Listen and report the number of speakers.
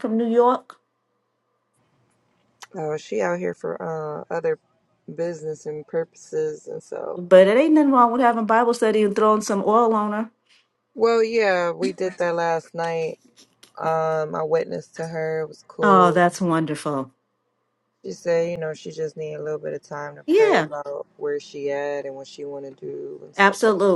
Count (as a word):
two